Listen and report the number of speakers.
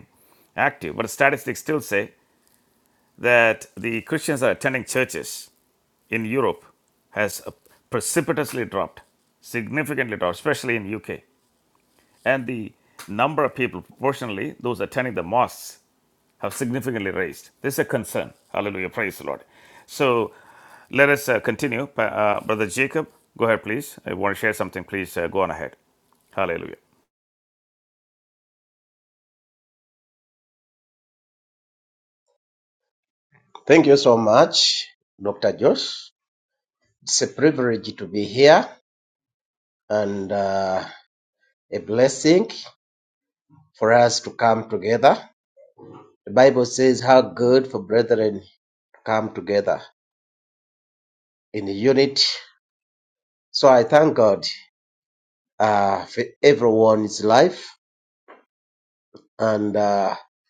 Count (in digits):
2